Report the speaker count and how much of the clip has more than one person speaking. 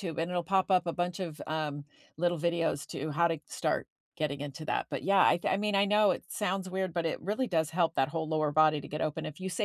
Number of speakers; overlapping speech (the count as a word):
one, no overlap